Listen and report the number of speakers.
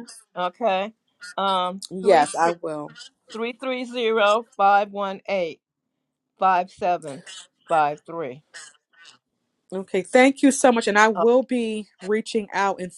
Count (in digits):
2